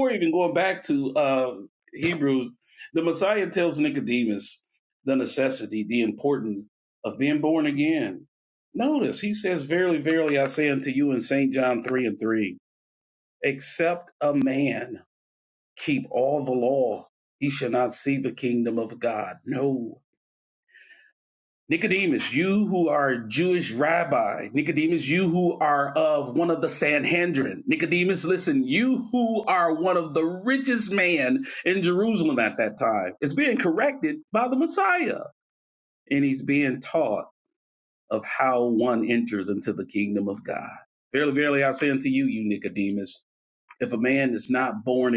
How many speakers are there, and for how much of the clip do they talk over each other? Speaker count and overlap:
1, no overlap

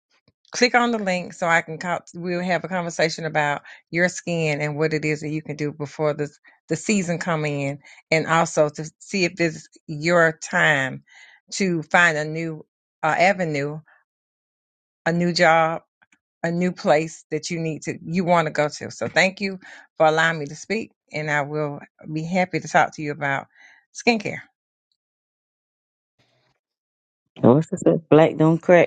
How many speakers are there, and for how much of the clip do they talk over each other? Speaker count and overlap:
2, no overlap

